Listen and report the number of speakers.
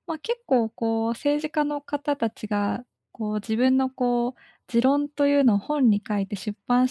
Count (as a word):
one